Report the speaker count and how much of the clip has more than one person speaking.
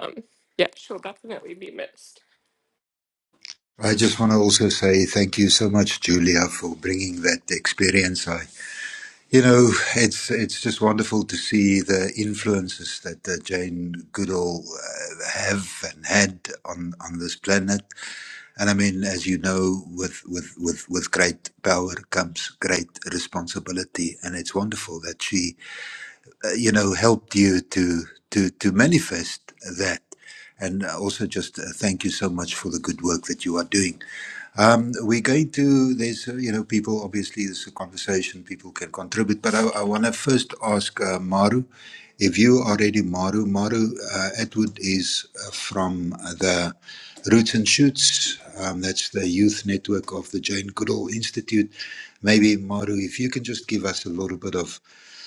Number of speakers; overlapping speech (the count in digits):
2, no overlap